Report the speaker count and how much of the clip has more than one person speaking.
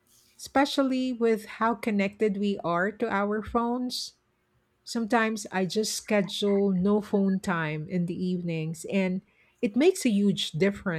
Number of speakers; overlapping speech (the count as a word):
one, no overlap